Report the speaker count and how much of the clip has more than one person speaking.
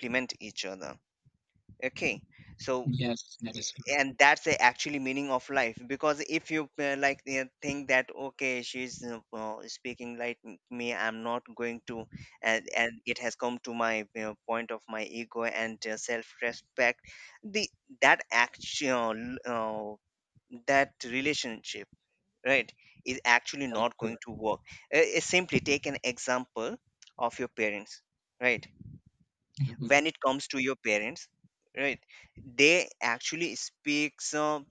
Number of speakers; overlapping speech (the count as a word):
two, about 2%